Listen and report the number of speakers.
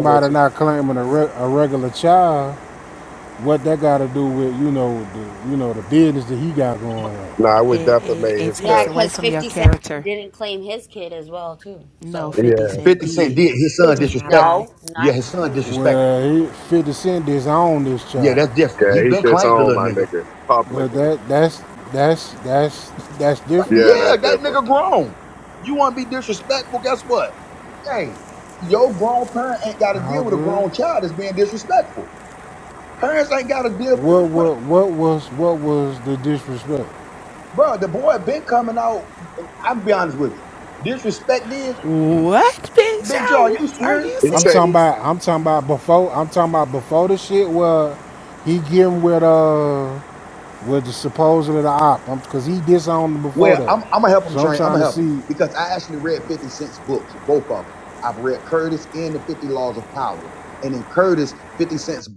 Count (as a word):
five